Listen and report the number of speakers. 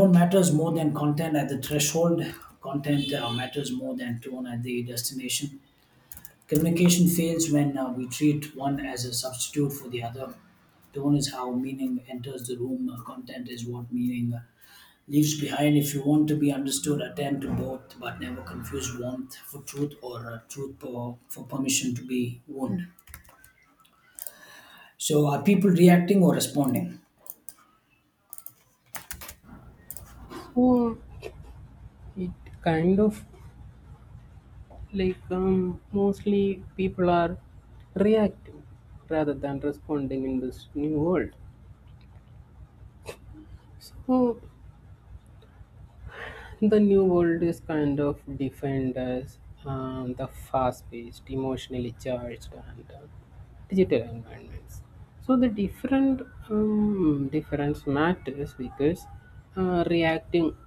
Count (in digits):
2